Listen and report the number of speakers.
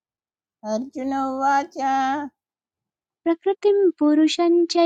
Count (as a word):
two